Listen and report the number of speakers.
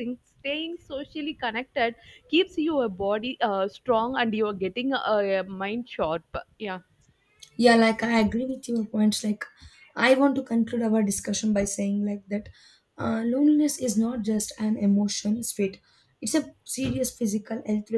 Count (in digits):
2